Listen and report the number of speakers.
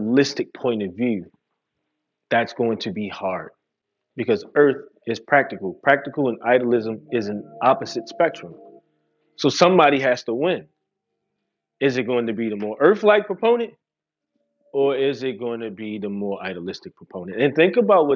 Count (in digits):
1